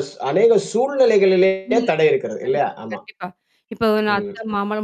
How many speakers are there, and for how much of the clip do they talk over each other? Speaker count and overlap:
two, about 22%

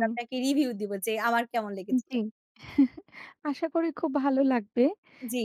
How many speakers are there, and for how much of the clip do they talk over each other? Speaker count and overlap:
two, about 8%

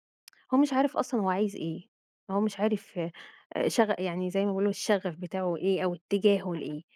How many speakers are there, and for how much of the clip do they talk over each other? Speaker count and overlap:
one, no overlap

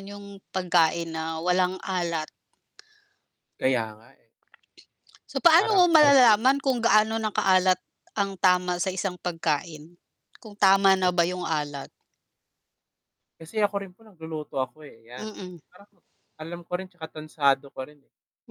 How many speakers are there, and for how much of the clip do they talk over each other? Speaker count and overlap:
two, about 6%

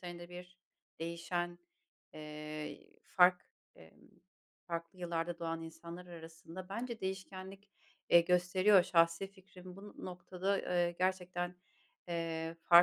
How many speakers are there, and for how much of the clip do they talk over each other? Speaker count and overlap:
one, no overlap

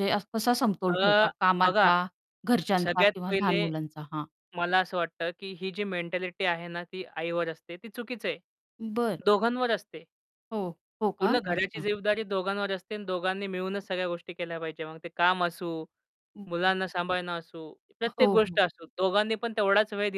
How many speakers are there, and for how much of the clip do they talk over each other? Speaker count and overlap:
two, about 16%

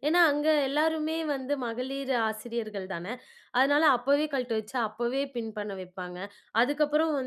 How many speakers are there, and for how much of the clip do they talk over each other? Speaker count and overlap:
one, no overlap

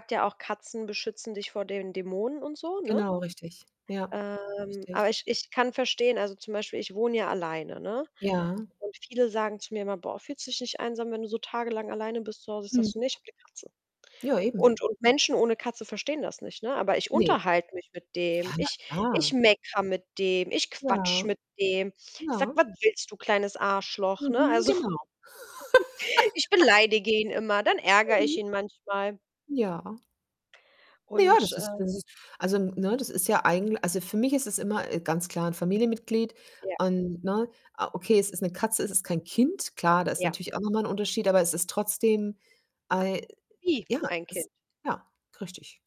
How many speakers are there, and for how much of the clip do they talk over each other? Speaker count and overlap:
two, about 9%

